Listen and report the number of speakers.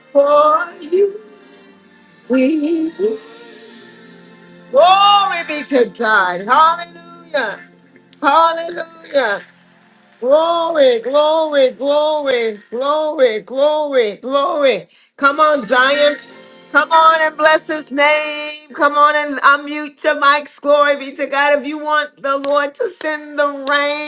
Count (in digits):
1